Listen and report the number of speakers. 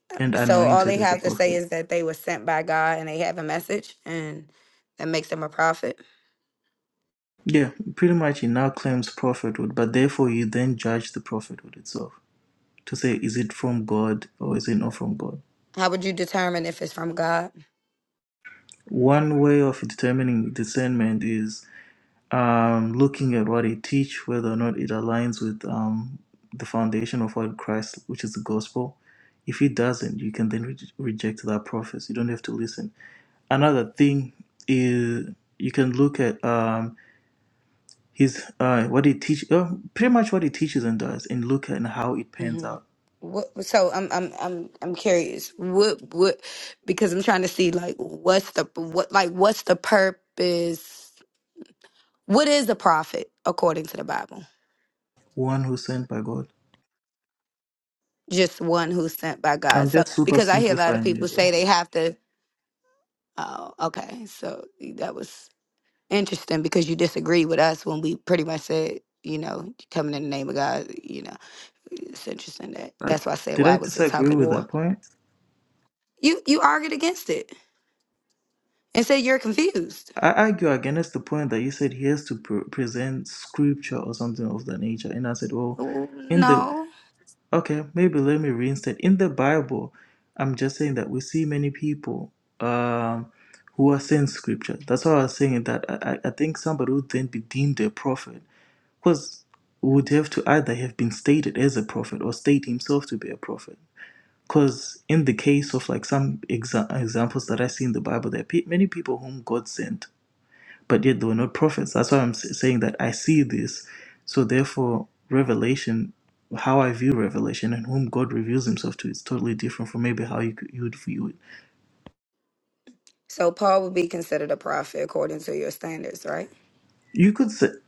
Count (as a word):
two